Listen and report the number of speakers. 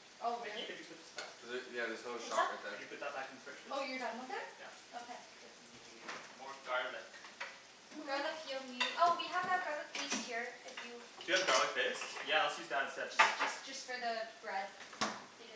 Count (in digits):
3